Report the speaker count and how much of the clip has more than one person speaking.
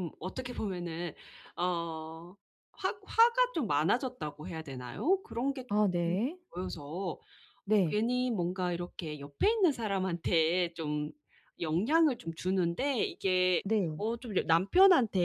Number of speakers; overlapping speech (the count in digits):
2, about 1%